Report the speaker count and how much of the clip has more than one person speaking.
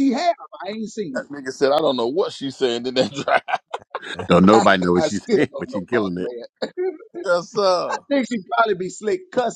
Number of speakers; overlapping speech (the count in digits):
3, about 17%